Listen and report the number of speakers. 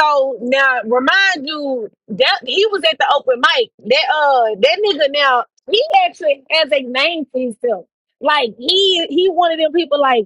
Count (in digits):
1